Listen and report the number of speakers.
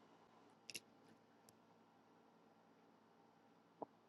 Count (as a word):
zero